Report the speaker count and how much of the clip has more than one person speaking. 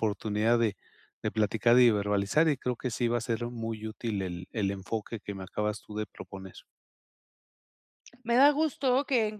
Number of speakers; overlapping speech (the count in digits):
2, no overlap